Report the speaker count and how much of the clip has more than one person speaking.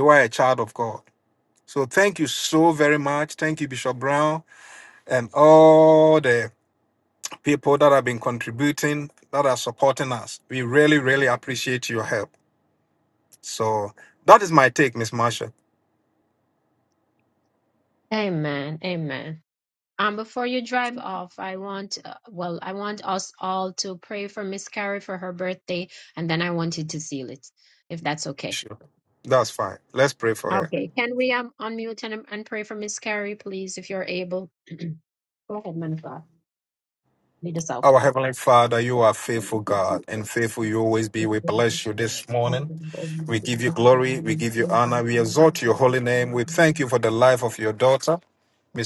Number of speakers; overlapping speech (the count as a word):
two, about 11%